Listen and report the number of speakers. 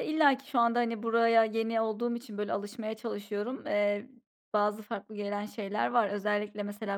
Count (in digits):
1